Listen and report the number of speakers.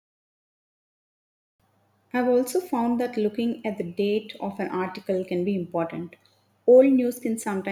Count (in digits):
1